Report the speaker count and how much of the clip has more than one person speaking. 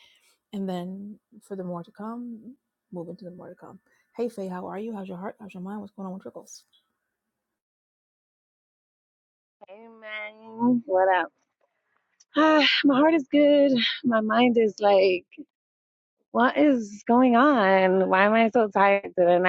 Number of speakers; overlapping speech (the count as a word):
two, no overlap